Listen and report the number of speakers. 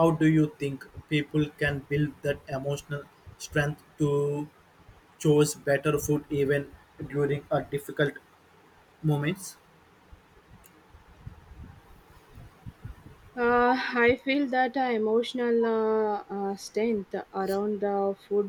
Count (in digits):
2